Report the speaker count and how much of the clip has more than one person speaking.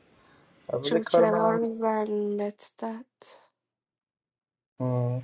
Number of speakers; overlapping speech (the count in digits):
2, about 15%